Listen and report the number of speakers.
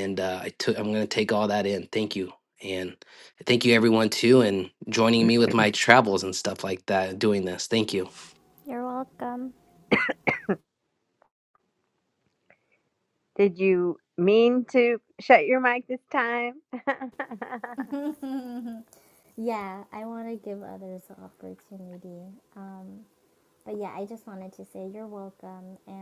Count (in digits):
3